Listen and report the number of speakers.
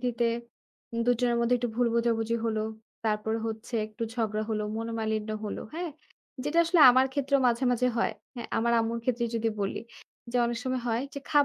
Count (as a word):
one